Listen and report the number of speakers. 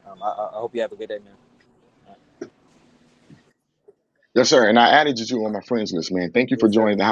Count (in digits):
2